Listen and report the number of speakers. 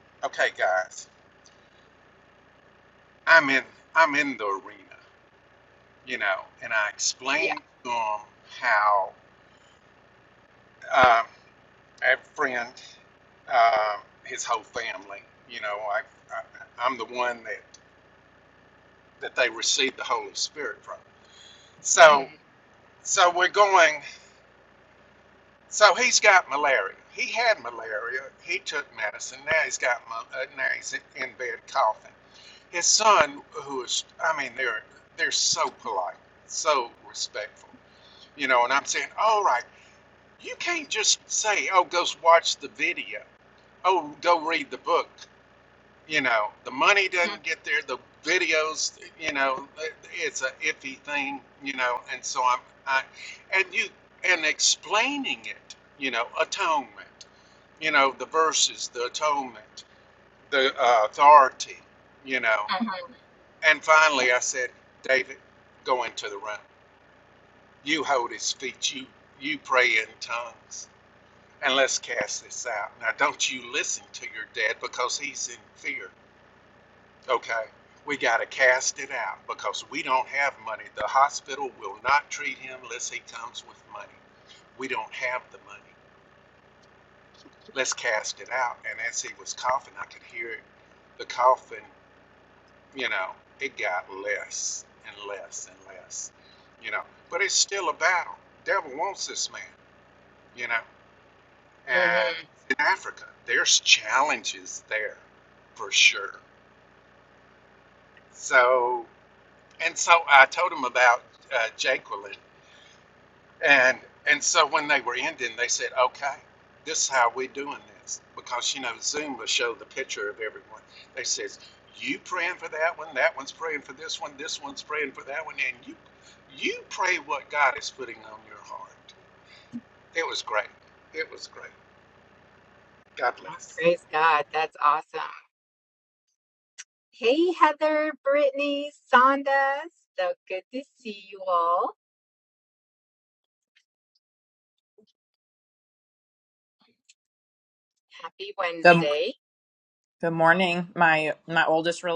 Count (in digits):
3